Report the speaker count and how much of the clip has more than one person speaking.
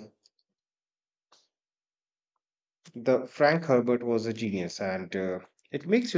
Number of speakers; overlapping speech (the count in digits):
1, no overlap